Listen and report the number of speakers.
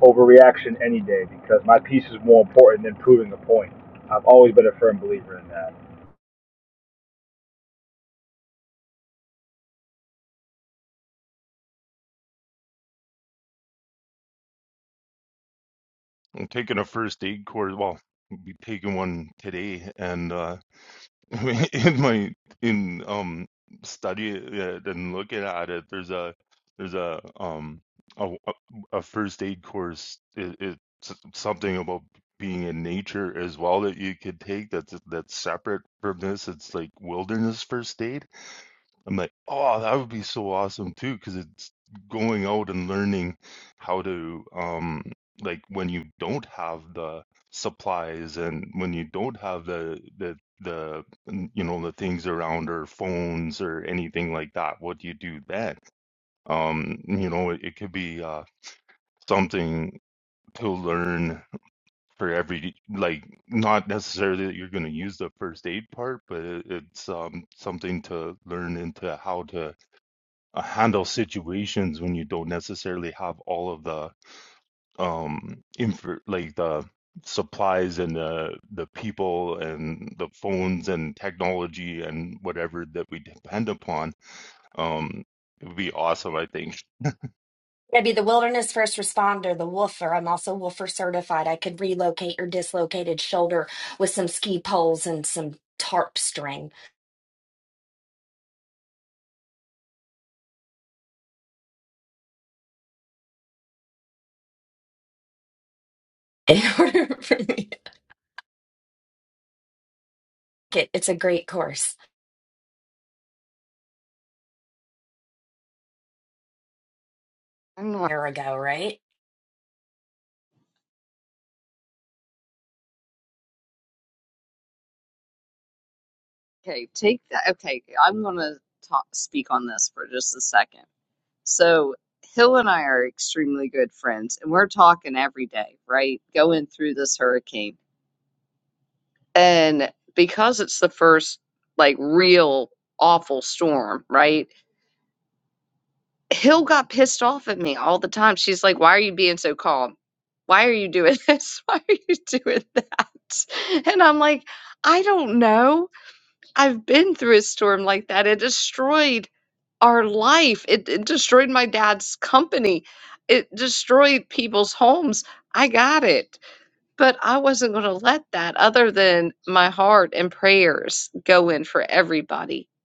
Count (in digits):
4